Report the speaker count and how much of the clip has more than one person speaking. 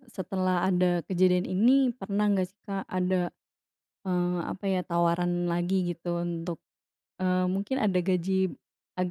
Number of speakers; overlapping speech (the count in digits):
1, no overlap